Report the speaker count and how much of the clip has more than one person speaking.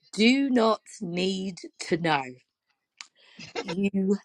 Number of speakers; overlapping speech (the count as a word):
one, no overlap